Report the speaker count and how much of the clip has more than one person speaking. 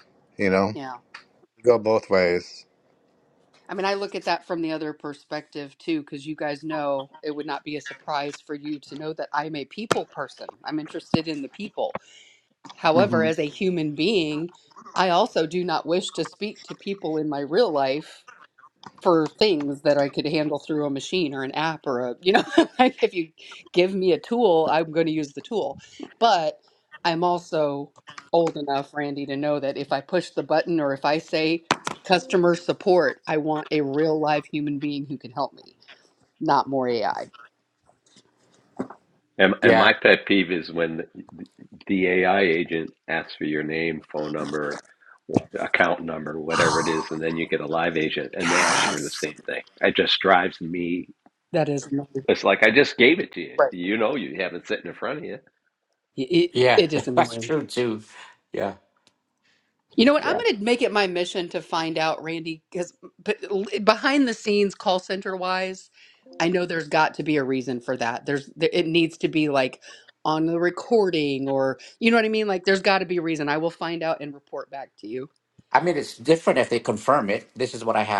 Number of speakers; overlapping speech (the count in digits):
4, about 4%